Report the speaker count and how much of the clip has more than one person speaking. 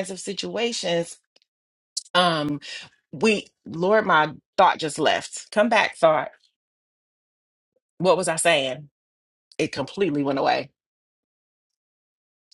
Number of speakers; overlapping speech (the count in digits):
1, no overlap